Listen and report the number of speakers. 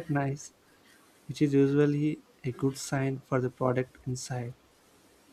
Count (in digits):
1